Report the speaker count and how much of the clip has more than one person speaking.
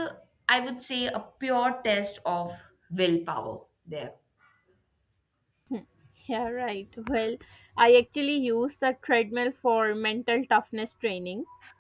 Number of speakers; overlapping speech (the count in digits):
2, no overlap